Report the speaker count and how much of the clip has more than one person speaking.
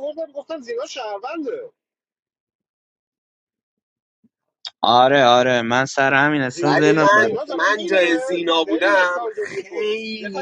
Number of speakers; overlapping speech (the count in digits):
3, about 29%